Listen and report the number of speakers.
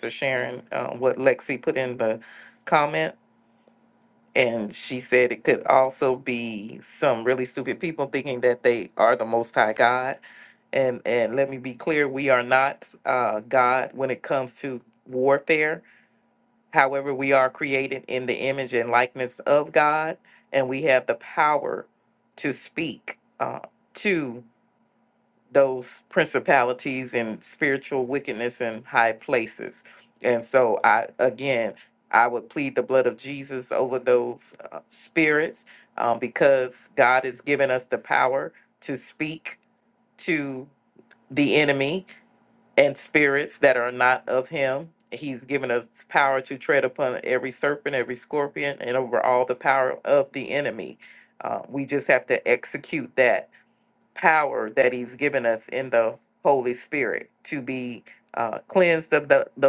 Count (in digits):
1